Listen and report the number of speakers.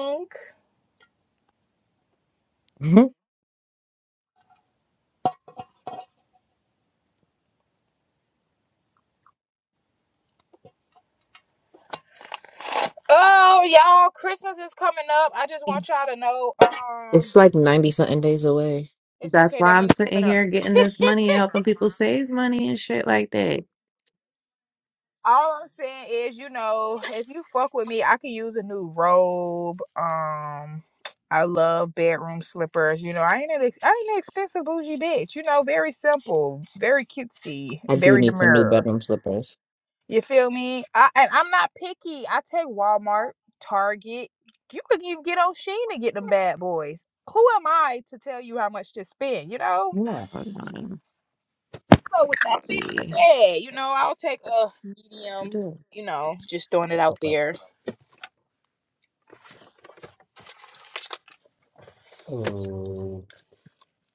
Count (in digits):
3